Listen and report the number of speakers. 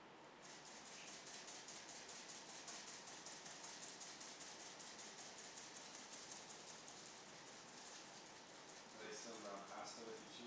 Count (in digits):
1